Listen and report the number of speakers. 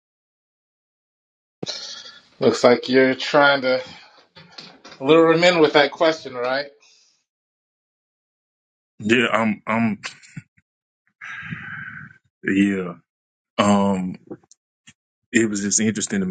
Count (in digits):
2